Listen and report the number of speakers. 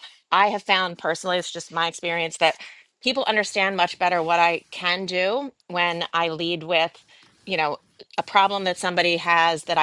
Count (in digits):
1